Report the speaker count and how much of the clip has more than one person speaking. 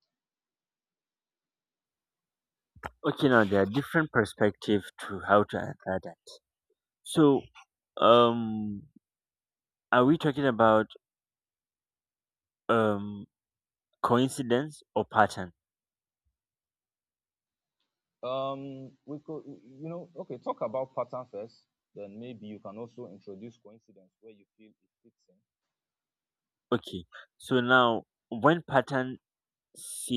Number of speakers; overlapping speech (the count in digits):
2, no overlap